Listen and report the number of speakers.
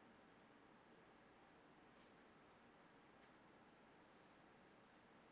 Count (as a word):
zero